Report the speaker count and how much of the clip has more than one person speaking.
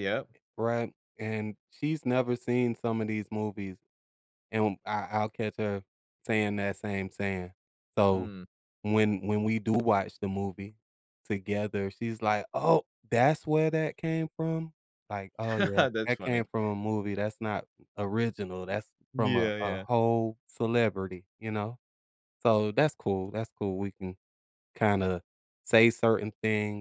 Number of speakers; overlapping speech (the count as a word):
two, about 5%